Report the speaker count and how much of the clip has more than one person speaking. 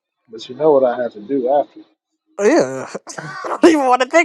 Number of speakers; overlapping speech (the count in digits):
2, no overlap